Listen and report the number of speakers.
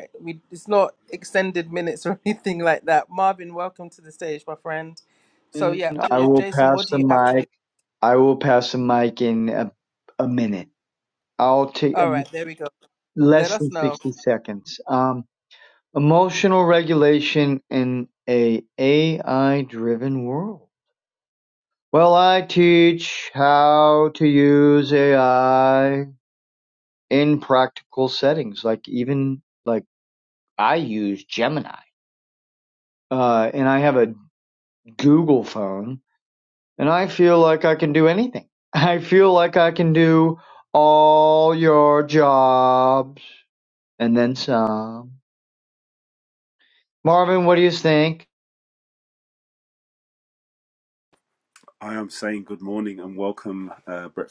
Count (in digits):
3